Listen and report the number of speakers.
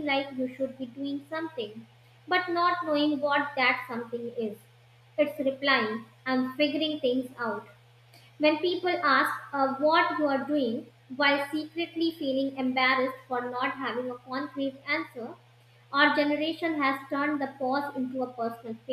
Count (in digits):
1